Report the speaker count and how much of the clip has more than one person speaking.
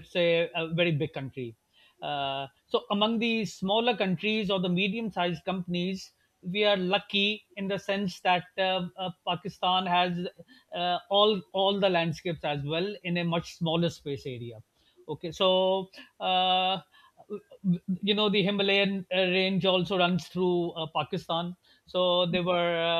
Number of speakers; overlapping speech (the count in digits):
1, no overlap